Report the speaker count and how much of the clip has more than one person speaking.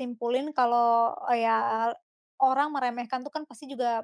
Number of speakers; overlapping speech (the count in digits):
1, no overlap